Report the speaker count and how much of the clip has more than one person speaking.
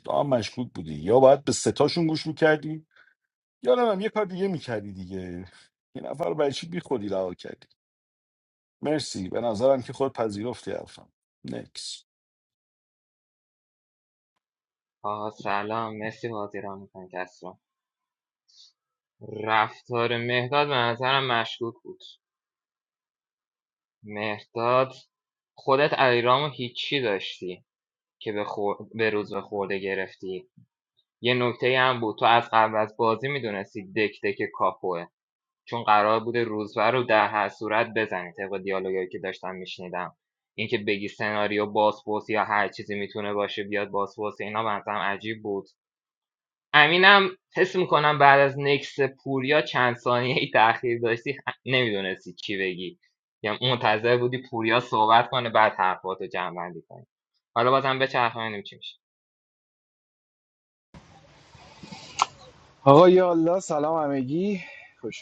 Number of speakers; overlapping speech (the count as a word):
three, no overlap